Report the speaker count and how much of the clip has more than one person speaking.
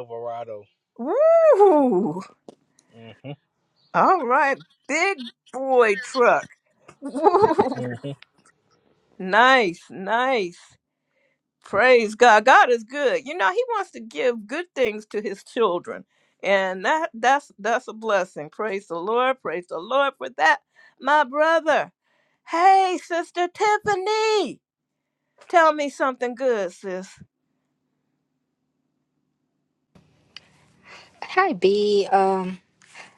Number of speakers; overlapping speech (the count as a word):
three, no overlap